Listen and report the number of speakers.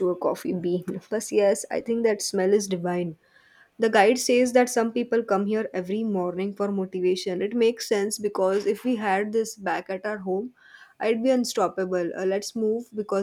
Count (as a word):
one